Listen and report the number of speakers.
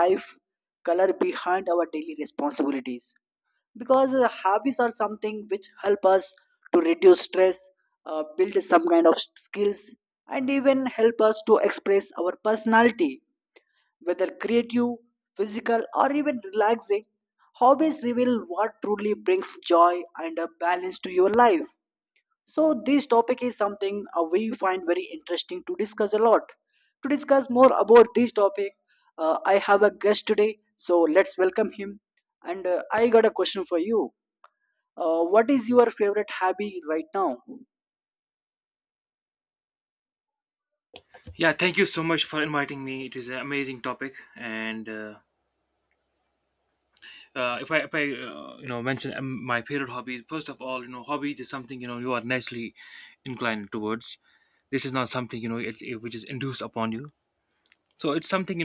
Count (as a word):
two